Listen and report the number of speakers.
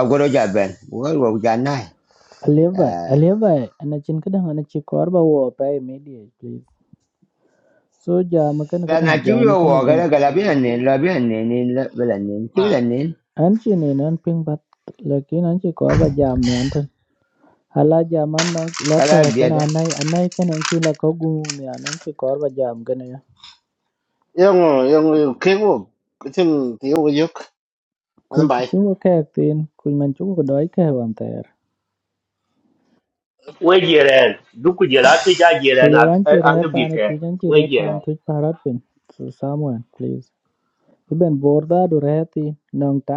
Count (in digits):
4